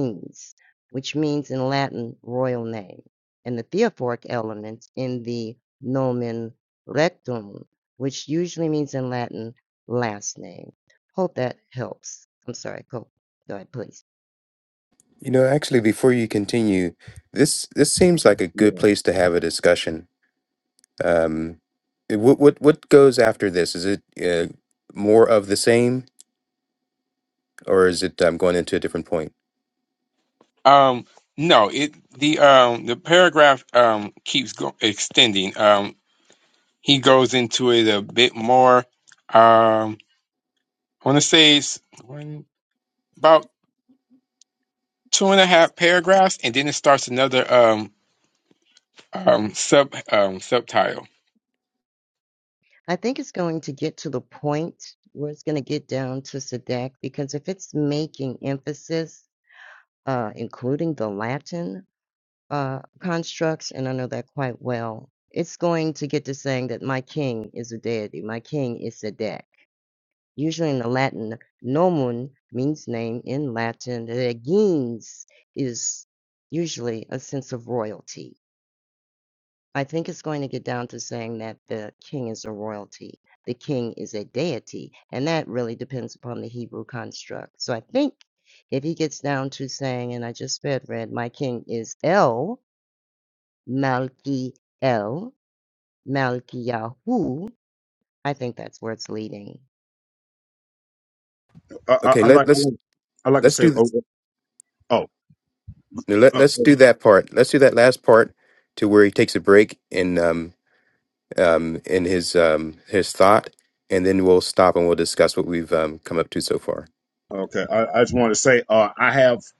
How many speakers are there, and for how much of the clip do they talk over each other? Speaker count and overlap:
4, about 1%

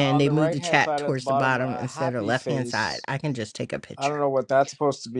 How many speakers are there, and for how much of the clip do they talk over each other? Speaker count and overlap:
2, about 57%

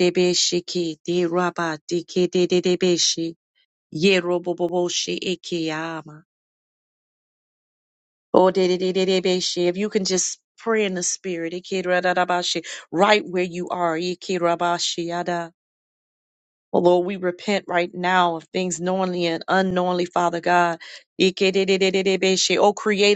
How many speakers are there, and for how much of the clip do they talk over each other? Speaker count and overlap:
1, no overlap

